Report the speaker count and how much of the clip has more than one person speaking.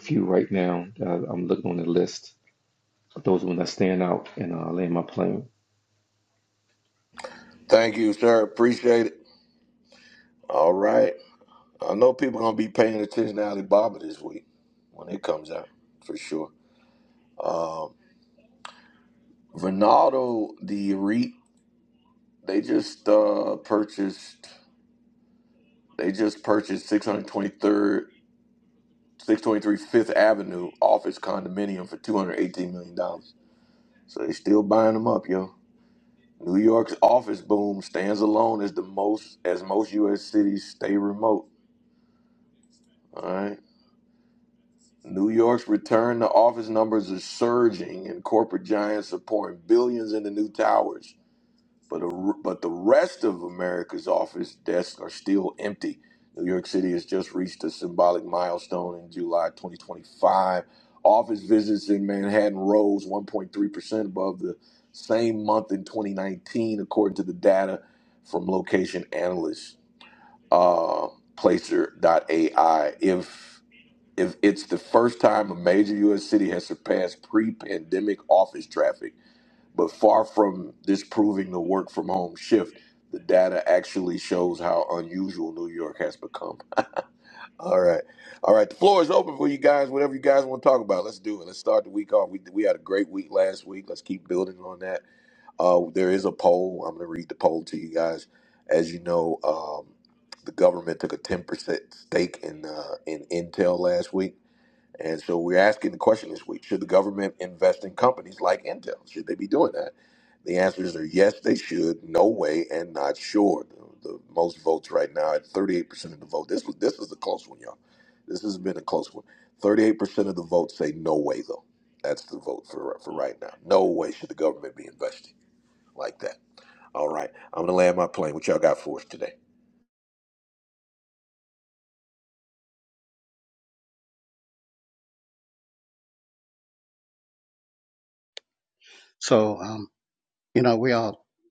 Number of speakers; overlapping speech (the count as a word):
three, no overlap